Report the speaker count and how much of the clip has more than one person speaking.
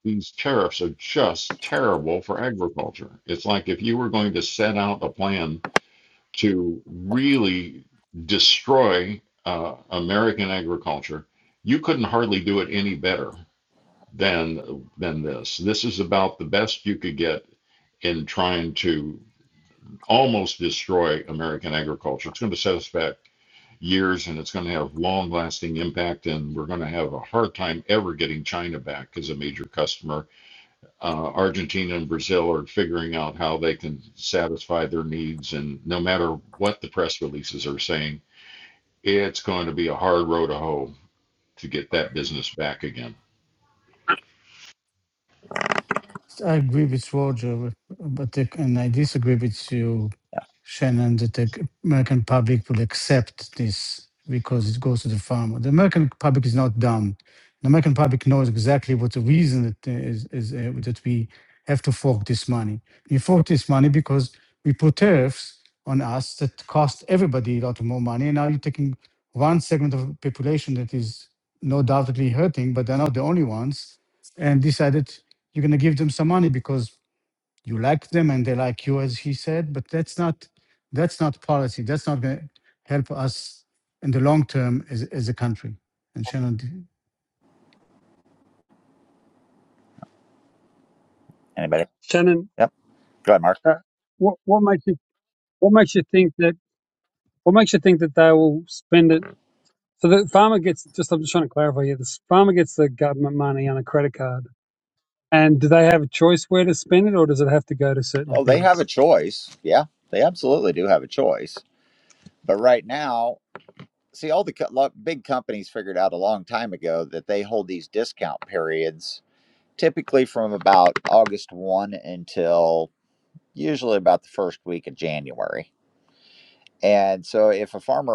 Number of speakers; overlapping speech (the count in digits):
4, under 1%